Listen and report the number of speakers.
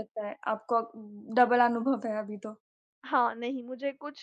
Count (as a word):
two